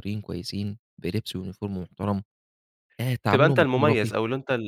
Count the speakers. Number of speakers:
2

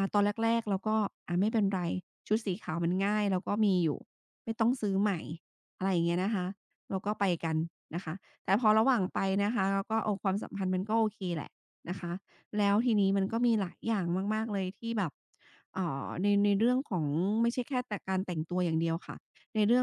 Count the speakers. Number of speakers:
1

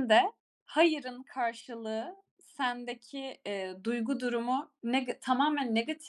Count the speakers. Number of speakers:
1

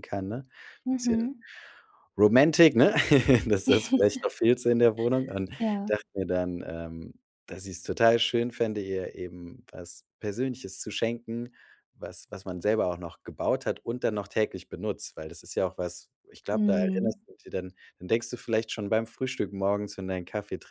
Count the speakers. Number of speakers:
2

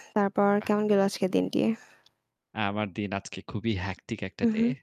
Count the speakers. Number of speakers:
2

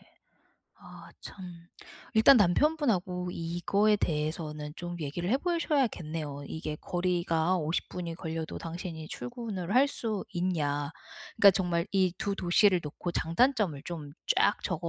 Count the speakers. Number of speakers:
1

